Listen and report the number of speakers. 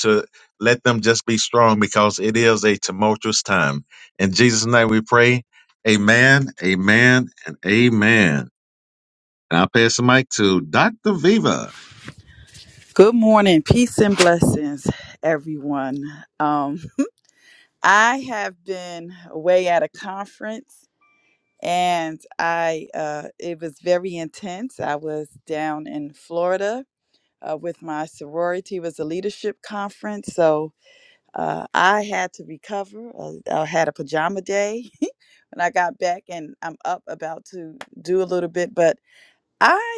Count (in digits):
2